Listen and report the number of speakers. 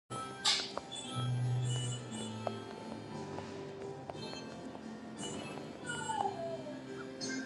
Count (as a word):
zero